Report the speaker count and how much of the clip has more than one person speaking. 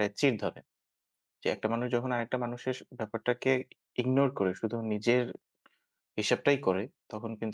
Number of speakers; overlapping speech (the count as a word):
one, no overlap